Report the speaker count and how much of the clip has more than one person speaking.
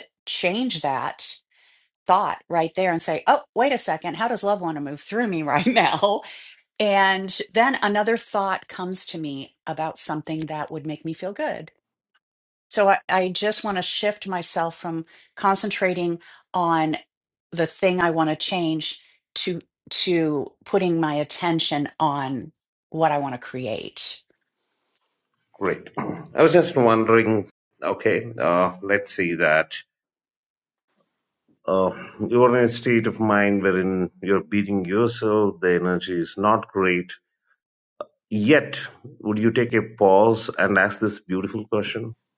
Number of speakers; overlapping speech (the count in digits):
2, no overlap